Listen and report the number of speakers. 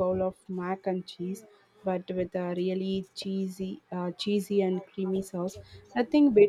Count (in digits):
1